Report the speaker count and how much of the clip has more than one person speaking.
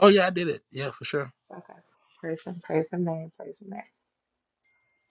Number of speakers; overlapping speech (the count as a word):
two, no overlap